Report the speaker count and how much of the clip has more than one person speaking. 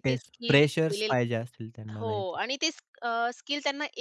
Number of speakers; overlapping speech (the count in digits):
2, about 36%